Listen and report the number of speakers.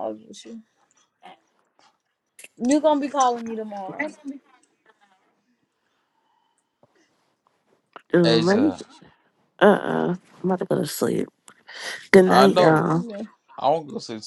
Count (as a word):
three